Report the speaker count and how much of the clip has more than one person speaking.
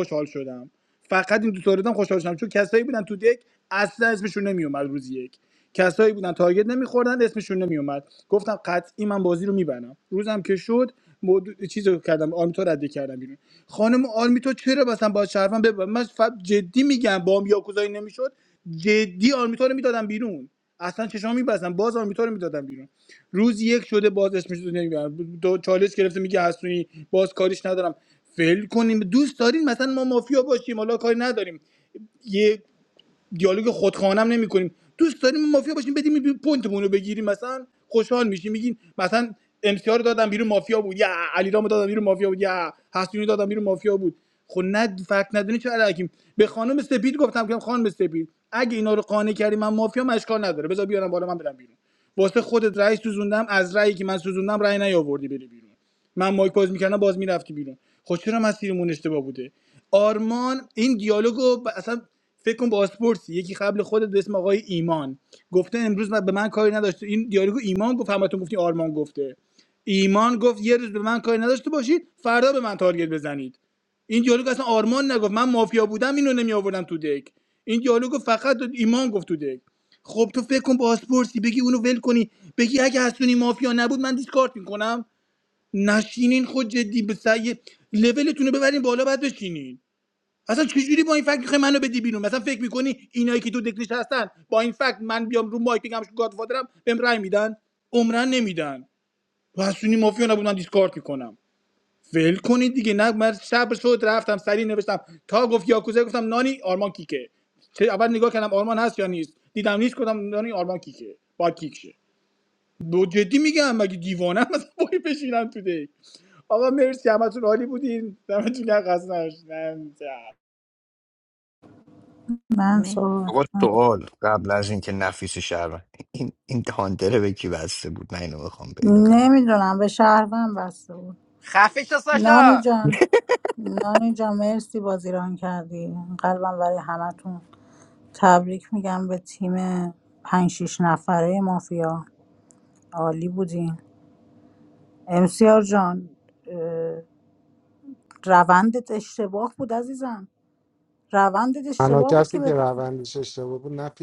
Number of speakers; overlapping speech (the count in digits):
5, about 1%